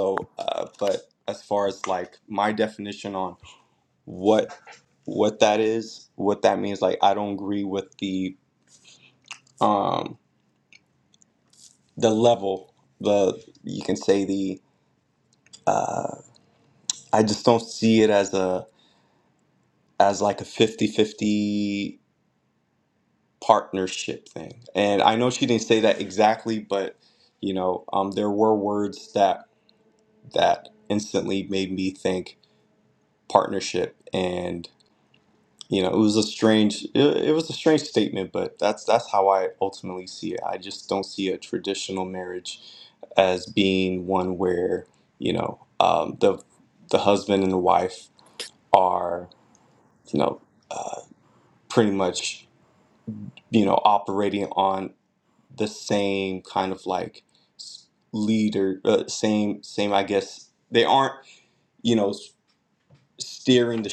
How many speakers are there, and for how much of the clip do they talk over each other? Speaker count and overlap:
one, no overlap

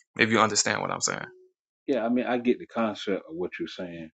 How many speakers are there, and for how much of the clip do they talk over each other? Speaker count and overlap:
two, no overlap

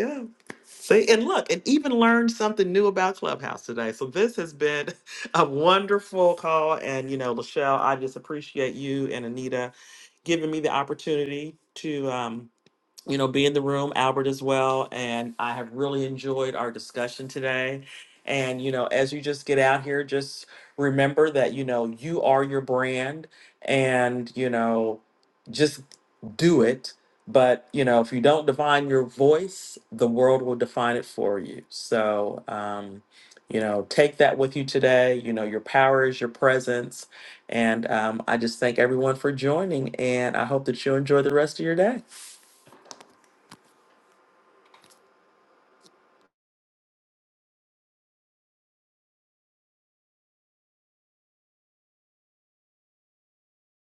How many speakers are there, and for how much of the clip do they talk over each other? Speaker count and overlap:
one, no overlap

